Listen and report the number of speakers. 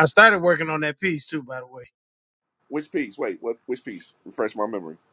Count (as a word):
two